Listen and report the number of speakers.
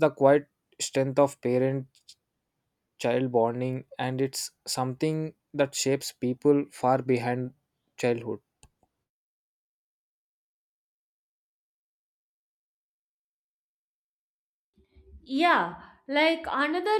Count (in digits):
2